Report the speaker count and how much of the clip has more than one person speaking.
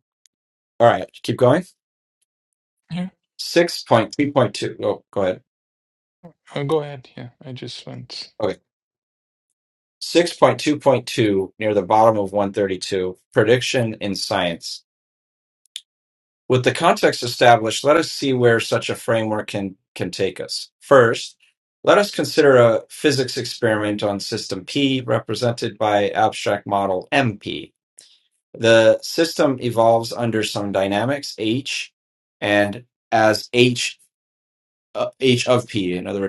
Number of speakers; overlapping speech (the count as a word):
two, no overlap